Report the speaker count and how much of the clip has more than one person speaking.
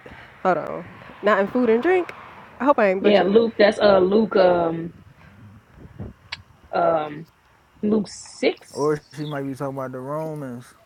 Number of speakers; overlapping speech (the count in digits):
3, about 4%